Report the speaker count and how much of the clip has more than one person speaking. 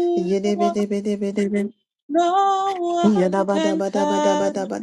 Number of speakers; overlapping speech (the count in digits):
2, about 34%